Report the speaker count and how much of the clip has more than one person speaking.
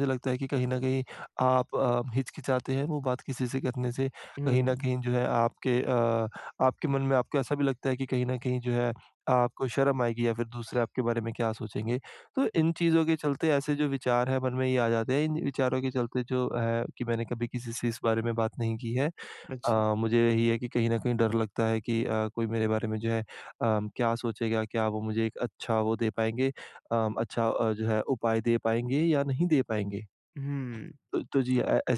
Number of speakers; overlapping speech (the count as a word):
two, about 2%